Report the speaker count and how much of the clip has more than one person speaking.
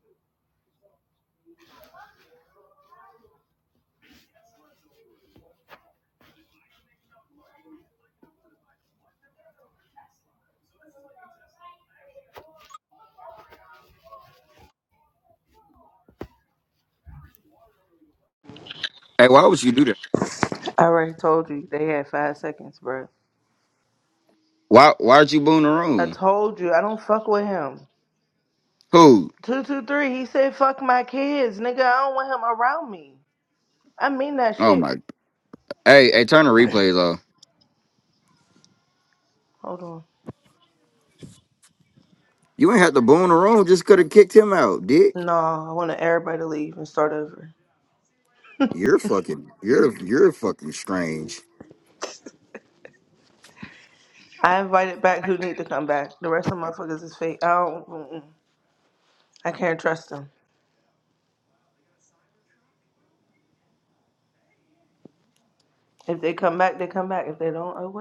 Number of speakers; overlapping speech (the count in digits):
2, about 1%